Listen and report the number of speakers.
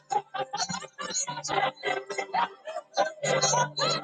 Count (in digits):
0